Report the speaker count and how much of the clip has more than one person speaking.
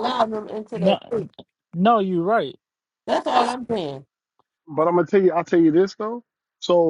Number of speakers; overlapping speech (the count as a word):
three, about 4%